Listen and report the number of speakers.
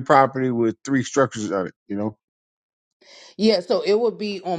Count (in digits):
2